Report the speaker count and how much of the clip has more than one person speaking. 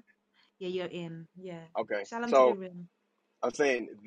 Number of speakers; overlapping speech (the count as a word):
two, about 11%